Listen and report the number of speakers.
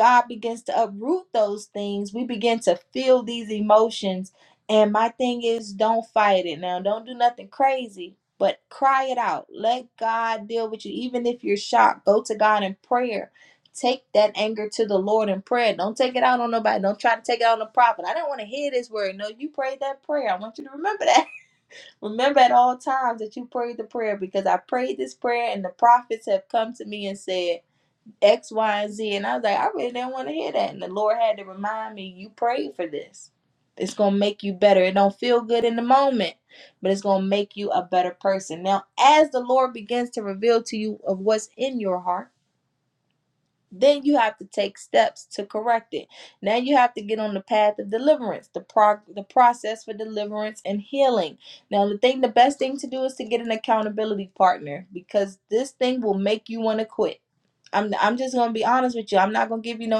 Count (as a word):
one